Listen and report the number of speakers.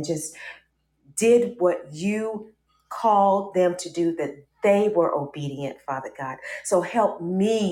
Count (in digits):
1